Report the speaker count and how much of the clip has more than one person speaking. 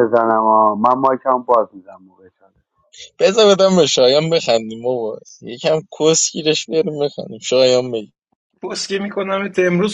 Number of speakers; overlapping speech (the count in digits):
3, no overlap